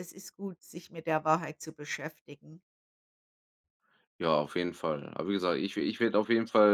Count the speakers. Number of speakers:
two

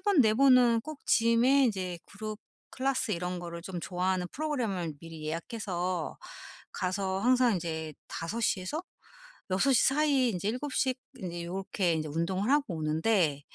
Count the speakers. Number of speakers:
one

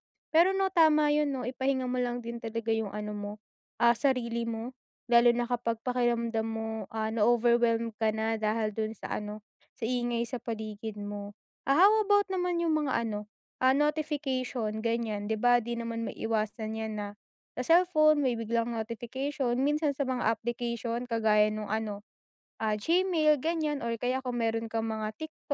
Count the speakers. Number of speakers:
one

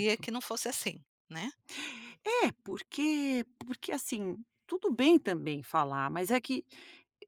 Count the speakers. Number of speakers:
two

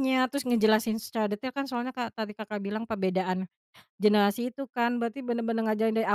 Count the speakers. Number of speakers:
one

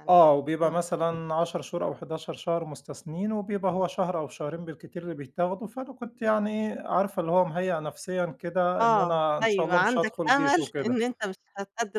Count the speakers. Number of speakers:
two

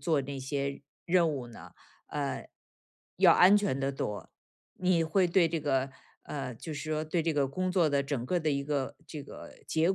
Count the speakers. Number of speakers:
one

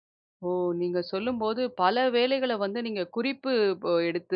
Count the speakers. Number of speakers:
one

